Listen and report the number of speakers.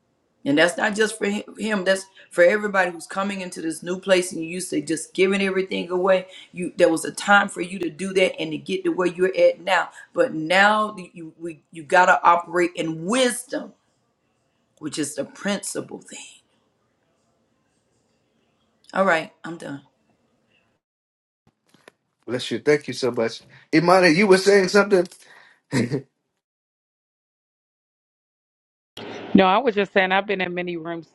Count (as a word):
three